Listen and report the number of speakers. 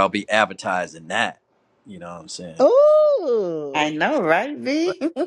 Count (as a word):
three